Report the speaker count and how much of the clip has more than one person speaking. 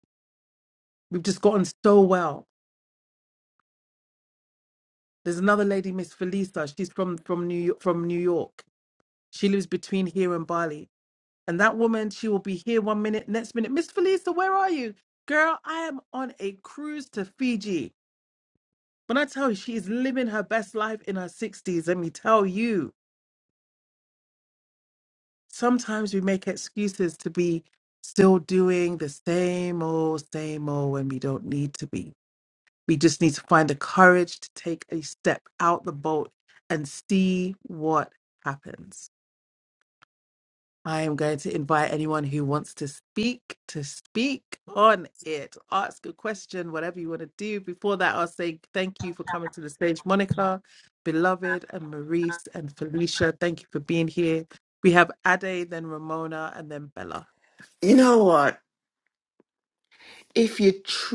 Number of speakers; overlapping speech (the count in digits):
2, no overlap